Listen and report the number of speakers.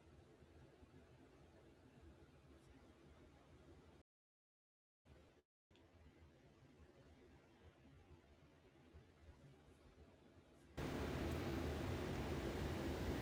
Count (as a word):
zero